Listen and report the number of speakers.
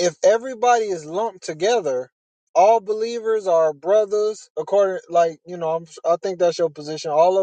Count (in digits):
1